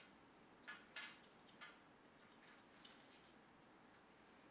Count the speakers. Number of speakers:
0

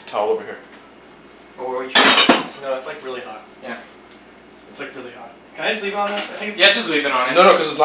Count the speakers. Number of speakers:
3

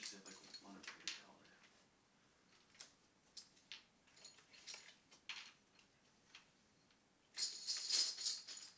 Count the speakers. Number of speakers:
1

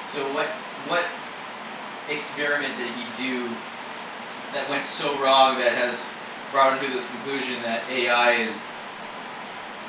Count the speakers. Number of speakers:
1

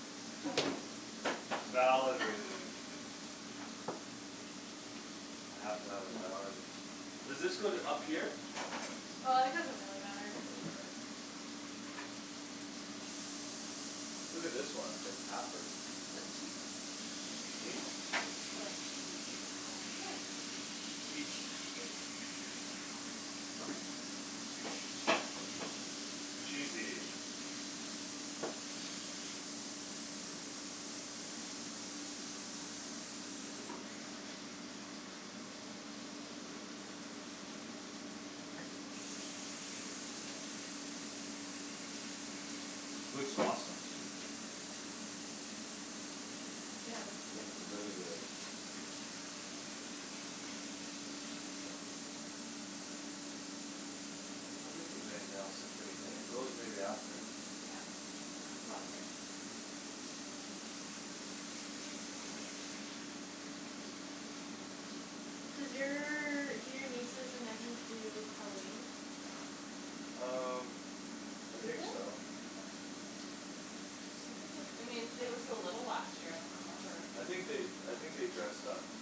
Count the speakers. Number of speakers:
3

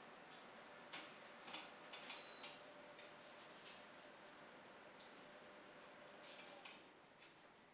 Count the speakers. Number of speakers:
0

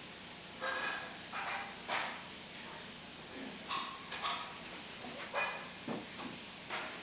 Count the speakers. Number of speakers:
0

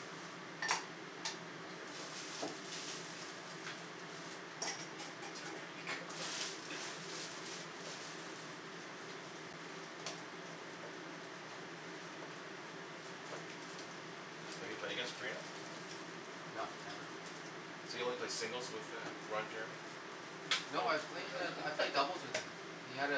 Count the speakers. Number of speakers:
2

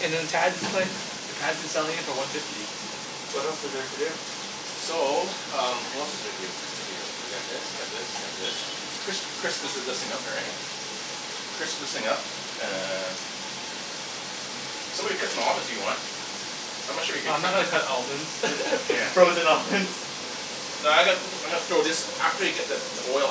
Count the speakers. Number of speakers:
3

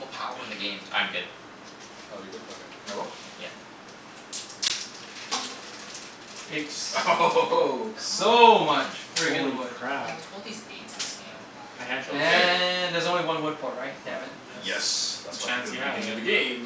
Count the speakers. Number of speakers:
4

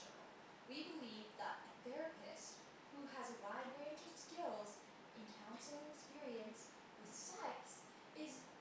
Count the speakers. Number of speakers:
1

